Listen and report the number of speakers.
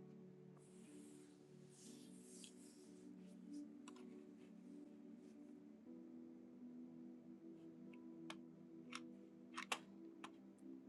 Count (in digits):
0